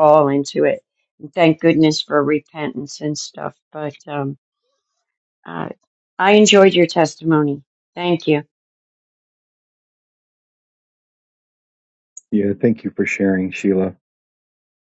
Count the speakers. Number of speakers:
two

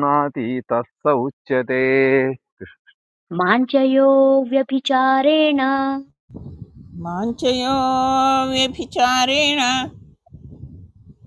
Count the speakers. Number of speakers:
three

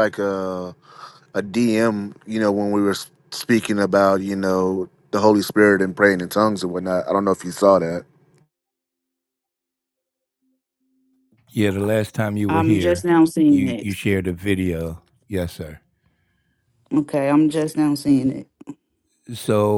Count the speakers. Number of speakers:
three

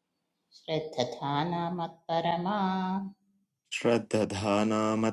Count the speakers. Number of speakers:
two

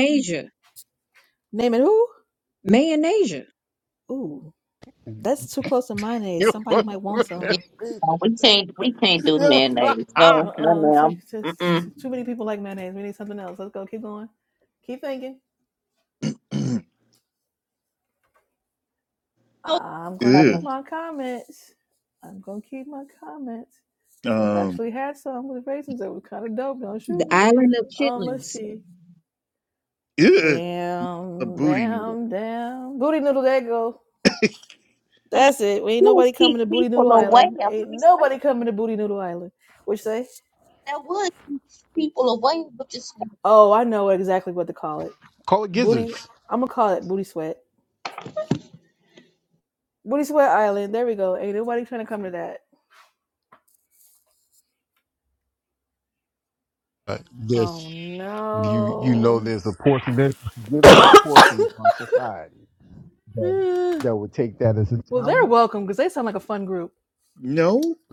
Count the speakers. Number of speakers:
five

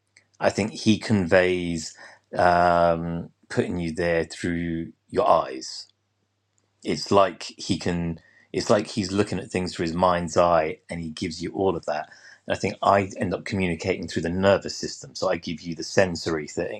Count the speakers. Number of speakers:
one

